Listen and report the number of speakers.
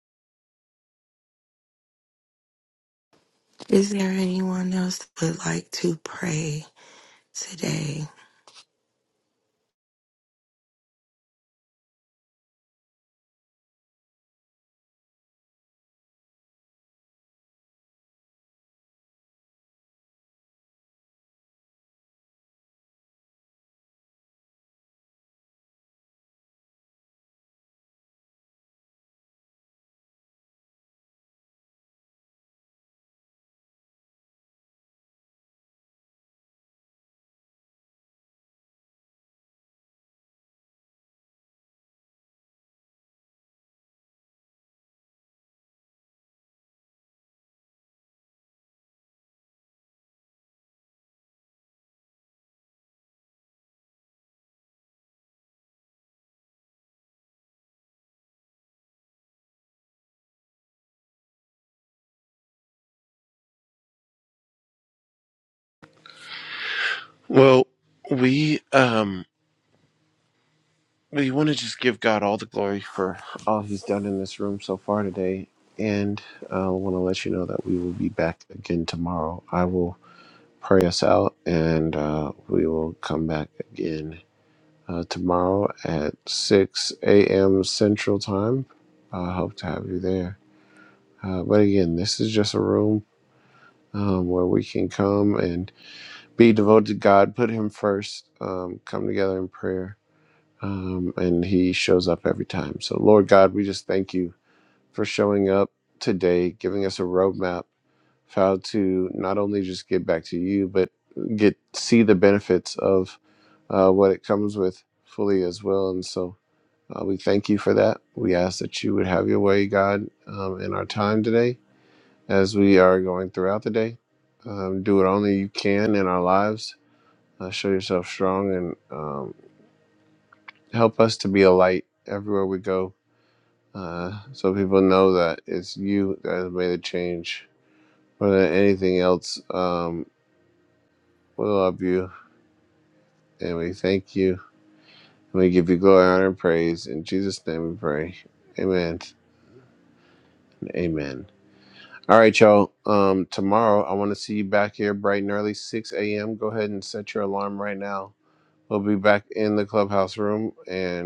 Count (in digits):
2